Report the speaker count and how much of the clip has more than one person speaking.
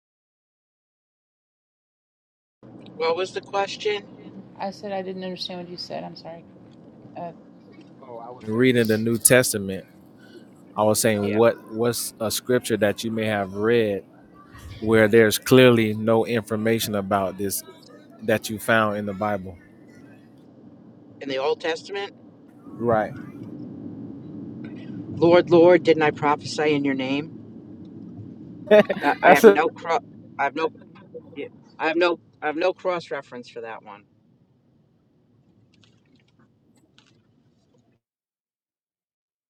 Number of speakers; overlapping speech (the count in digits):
3, about 2%